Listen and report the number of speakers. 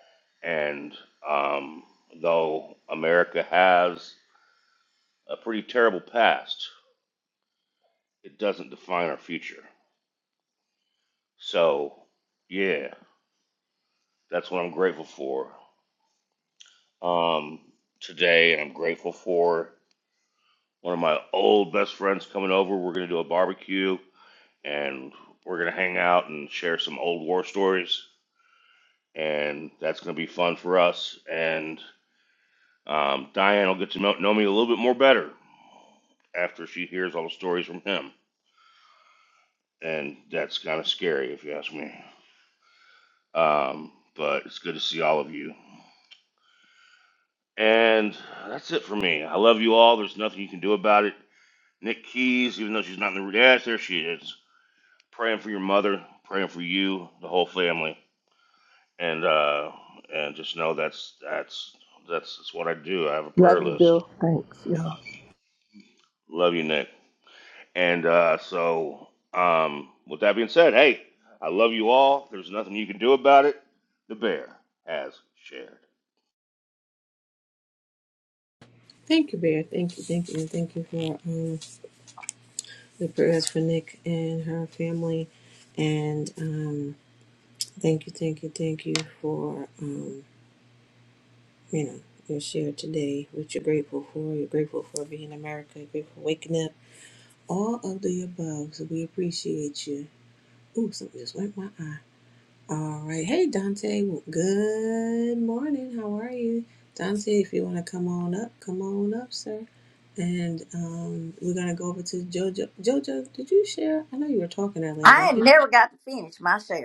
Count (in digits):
4